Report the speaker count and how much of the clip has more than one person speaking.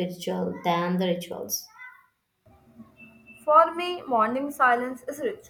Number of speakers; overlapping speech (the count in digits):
2, no overlap